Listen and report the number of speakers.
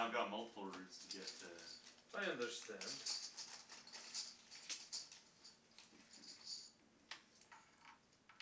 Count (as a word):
two